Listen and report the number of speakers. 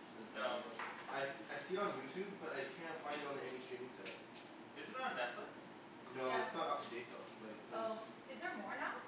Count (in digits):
3